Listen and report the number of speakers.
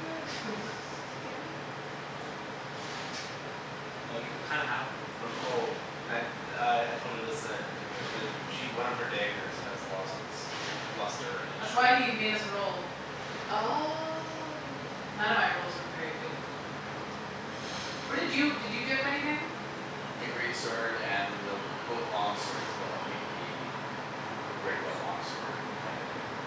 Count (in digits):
4